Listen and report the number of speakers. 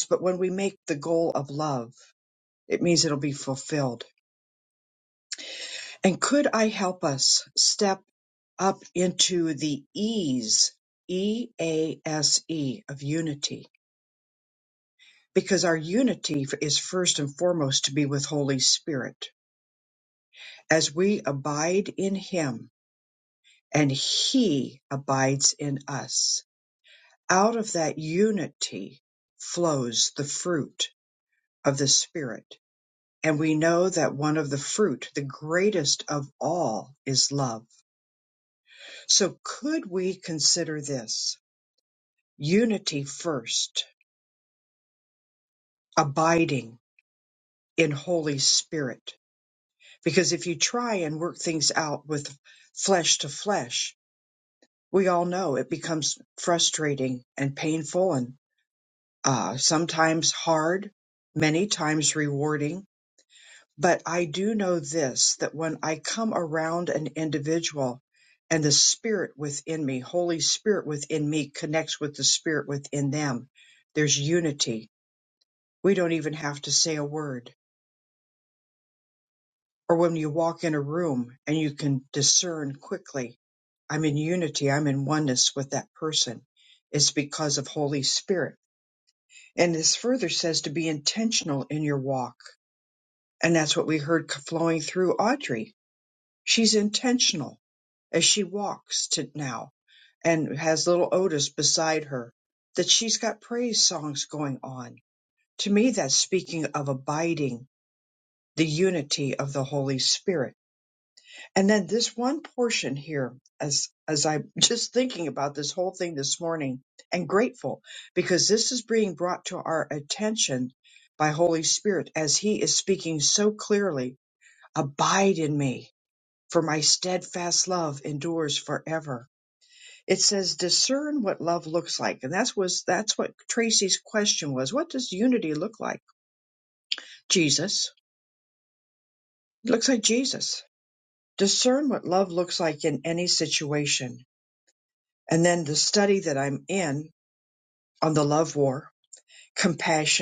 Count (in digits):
1